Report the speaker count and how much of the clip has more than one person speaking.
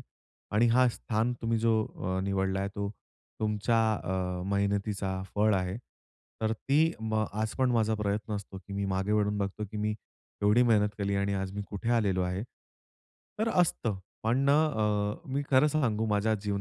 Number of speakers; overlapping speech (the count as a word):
one, no overlap